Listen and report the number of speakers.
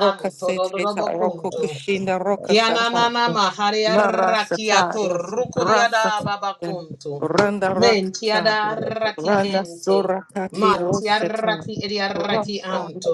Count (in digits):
2